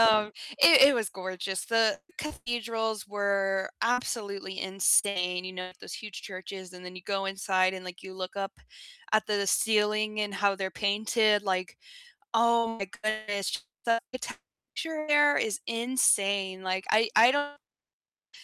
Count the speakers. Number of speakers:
one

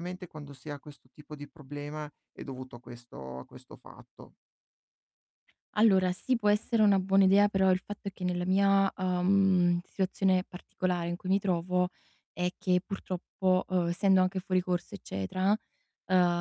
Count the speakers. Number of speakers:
two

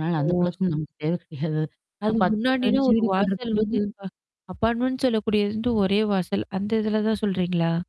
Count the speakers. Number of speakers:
two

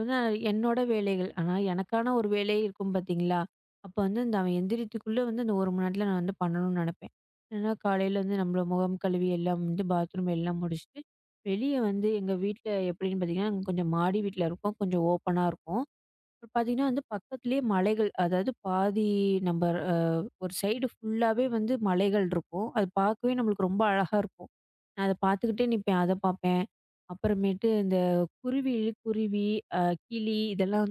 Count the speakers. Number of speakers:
one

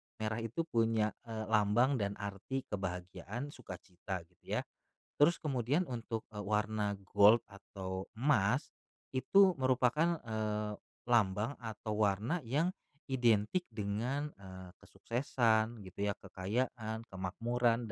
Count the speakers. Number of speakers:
one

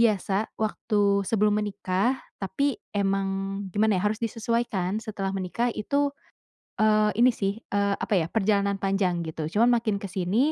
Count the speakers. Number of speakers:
one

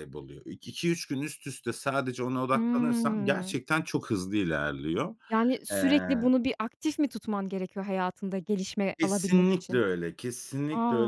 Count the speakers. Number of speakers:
two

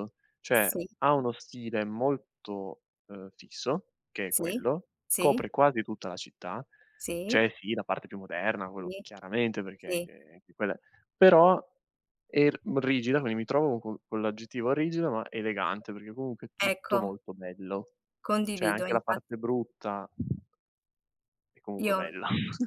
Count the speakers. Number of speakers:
two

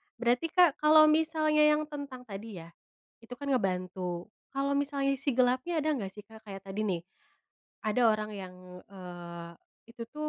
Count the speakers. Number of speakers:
one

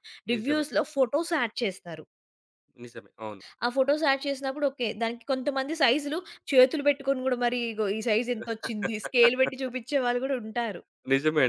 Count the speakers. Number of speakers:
two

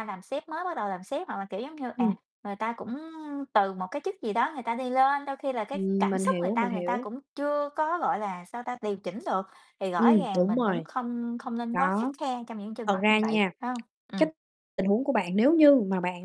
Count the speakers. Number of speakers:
two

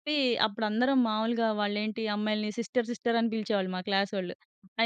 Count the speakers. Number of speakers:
one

